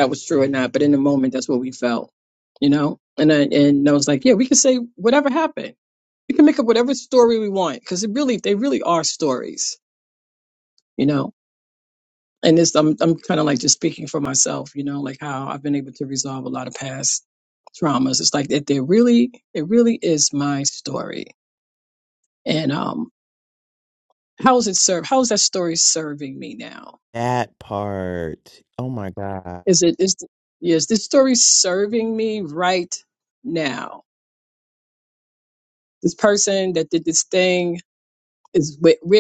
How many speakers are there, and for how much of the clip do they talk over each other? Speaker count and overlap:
two, no overlap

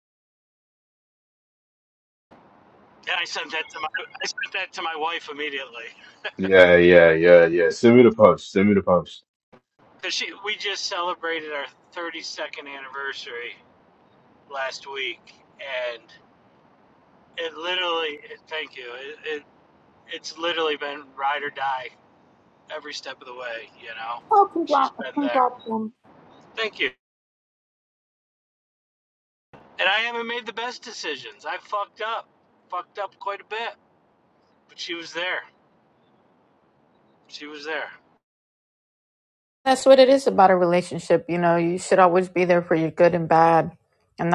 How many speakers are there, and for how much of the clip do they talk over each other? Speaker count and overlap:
three, about 2%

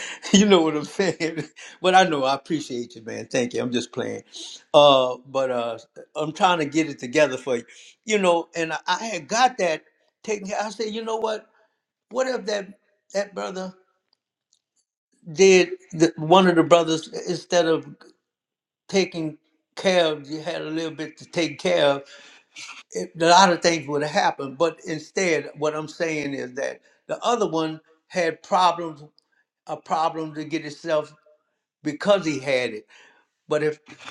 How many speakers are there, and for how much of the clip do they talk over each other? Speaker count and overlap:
one, no overlap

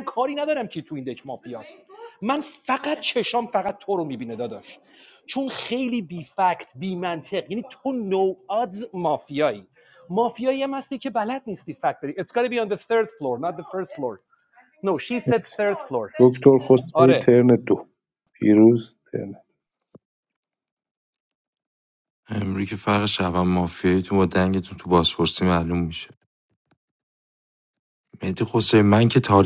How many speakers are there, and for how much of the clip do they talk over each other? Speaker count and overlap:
three, about 2%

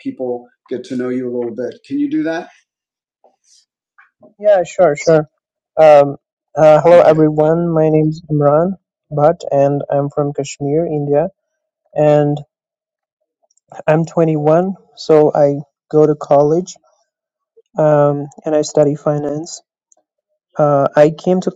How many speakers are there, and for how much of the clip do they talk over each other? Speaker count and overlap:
two, about 1%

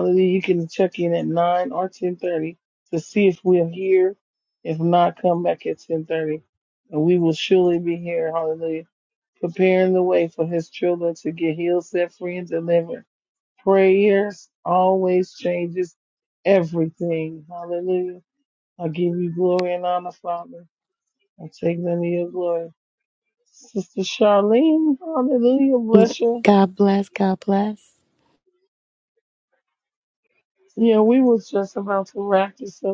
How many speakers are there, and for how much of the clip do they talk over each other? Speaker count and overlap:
two, no overlap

